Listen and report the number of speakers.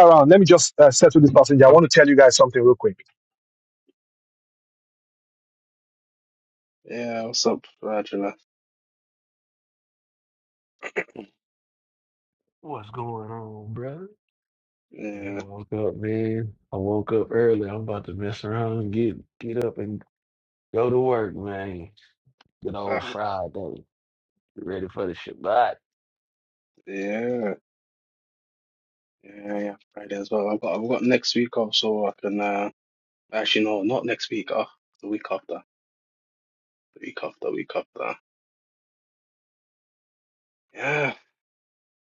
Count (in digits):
3